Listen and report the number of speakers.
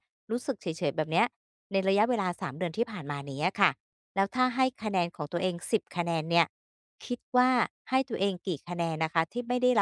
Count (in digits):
1